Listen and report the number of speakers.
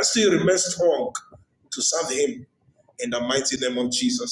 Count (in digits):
1